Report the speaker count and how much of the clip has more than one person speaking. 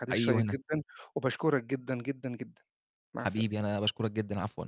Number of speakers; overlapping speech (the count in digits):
2, about 13%